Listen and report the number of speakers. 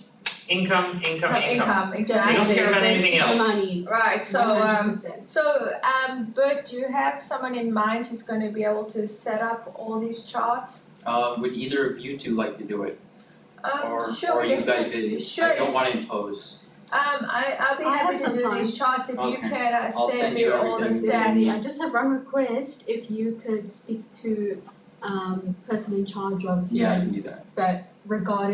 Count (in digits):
4